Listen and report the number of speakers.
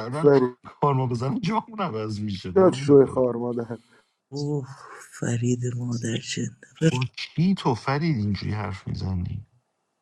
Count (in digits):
3